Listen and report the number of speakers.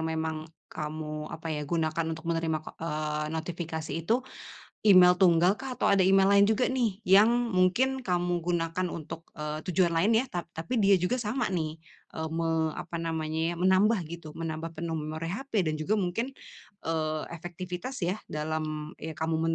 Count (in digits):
1